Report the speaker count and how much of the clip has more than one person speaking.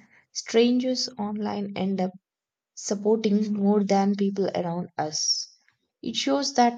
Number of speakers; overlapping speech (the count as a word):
one, no overlap